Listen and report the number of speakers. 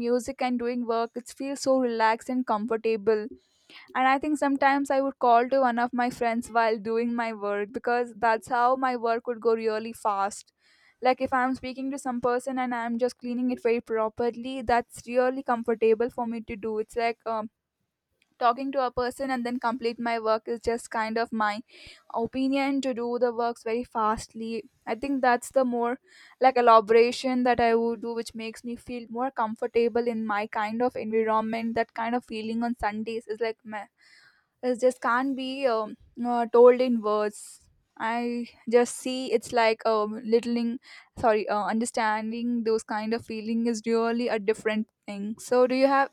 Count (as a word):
one